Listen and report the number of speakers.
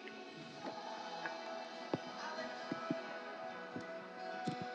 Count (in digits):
0